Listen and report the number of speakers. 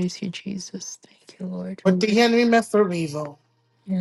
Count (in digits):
2